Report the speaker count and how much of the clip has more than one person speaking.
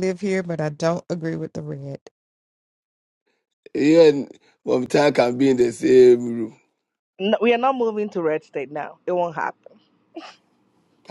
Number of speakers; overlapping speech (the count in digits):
3, no overlap